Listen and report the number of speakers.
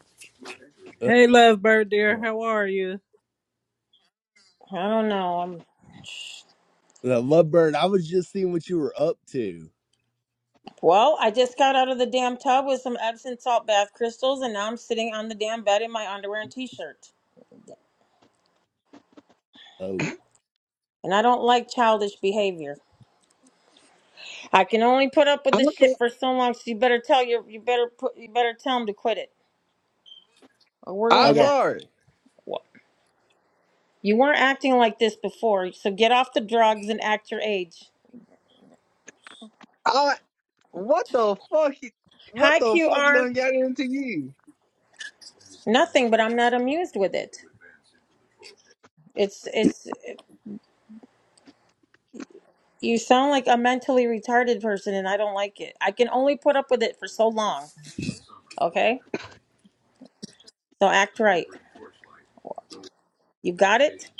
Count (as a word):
four